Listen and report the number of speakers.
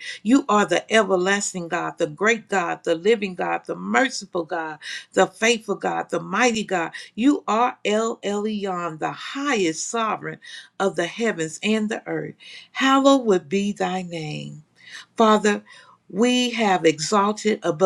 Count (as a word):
one